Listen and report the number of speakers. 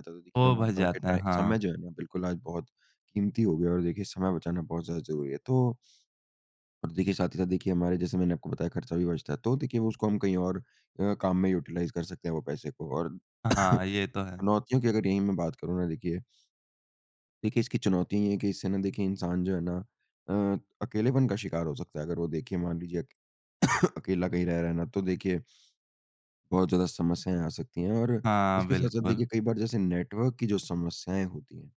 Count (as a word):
two